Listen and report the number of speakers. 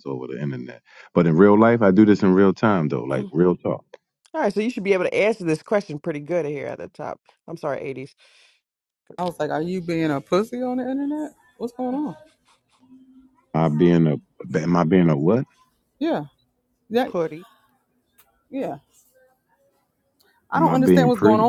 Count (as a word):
three